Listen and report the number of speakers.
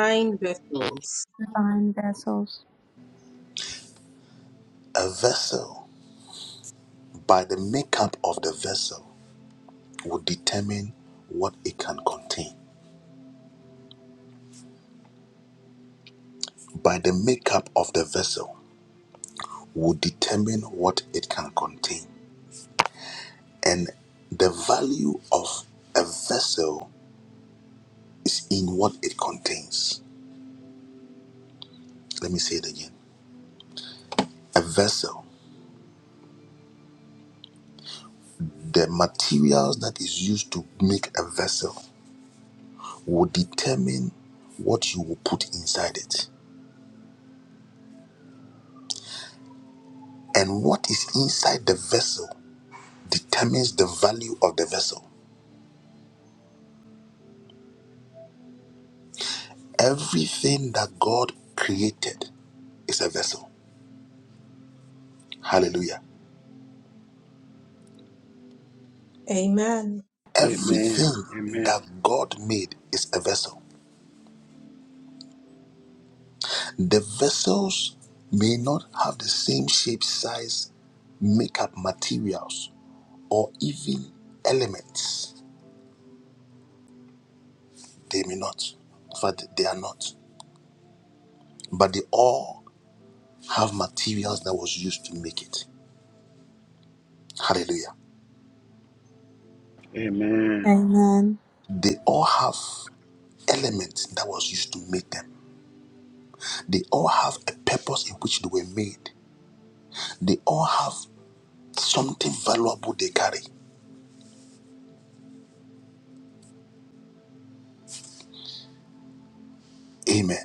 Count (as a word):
four